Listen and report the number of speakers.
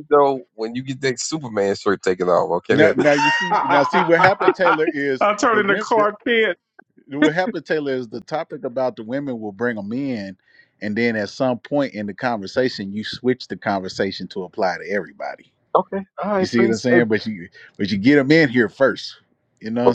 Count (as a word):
three